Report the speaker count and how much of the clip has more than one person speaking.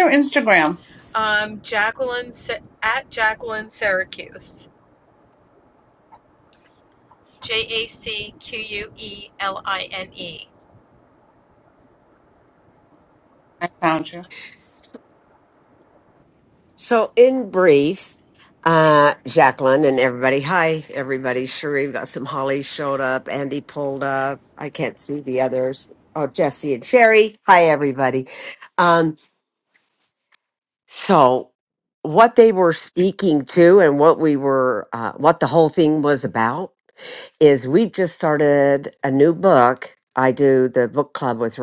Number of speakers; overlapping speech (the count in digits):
3, no overlap